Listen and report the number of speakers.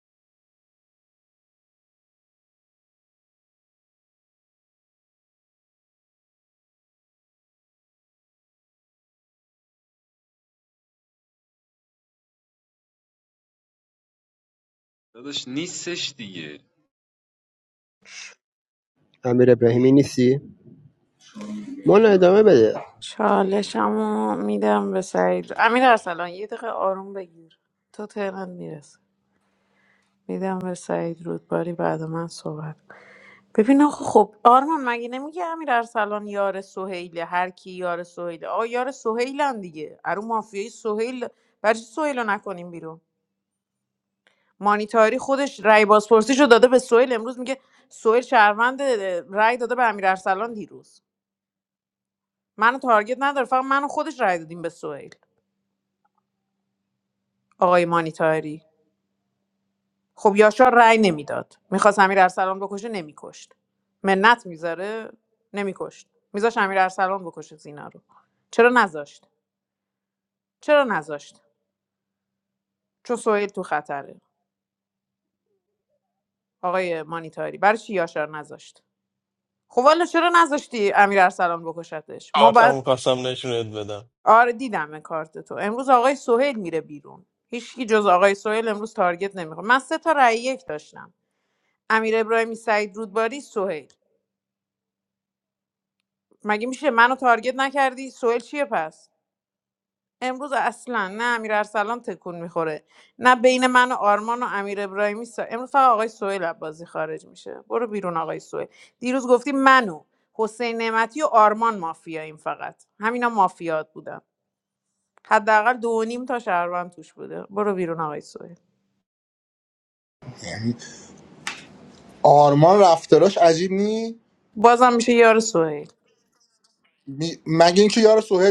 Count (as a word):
five